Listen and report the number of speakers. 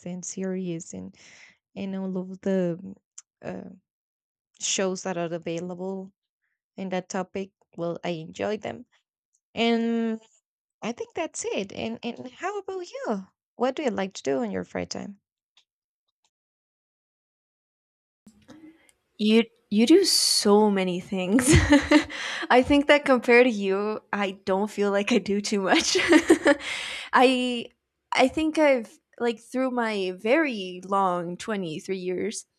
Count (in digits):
2